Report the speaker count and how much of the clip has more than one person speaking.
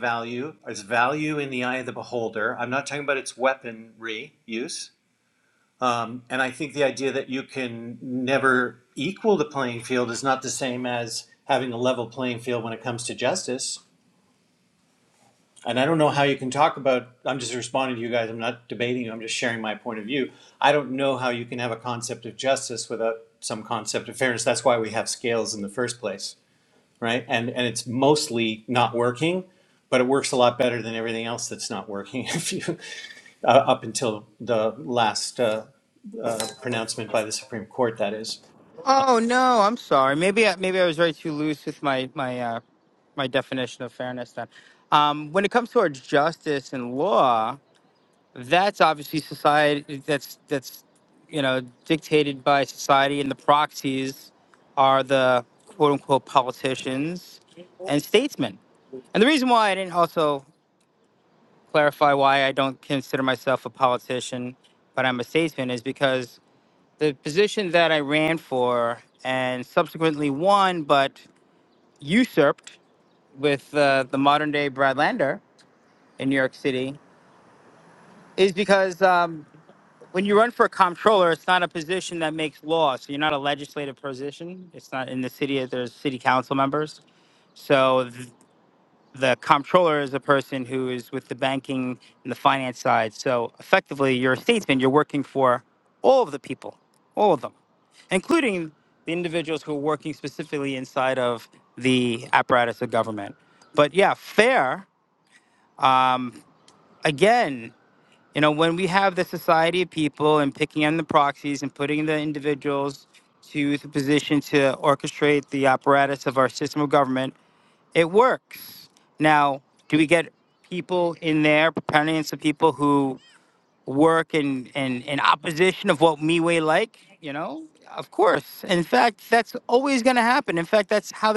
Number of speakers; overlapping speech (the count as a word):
two, no overlap